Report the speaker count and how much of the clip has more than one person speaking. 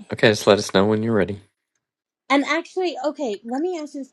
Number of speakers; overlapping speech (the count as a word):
two, no overlap